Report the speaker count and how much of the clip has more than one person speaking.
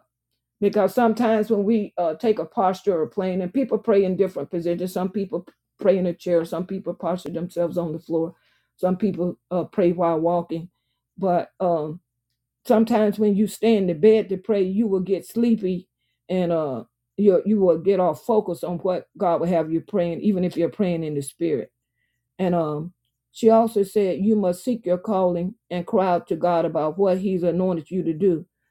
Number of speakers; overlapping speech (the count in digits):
1, no overlap